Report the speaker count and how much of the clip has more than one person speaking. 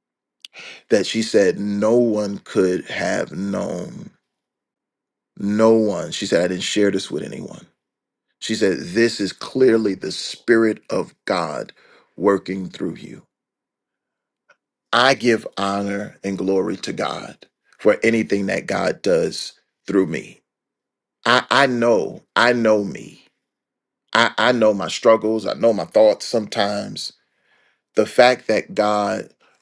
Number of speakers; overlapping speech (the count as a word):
one, no overlap